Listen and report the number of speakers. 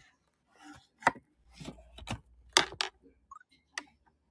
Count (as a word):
zero